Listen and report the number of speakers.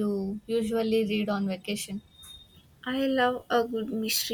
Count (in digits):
2